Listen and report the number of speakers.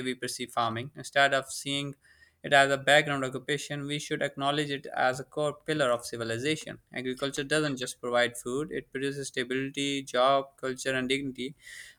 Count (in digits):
1